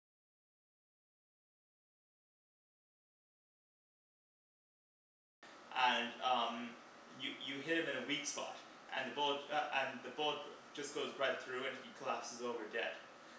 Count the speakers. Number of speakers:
1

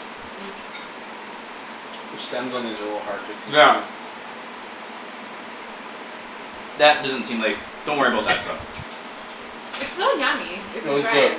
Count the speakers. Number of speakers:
3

